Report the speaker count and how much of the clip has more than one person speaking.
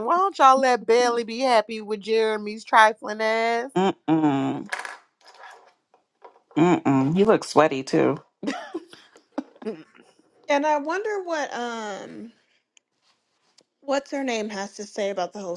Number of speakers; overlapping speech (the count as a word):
three, no overlap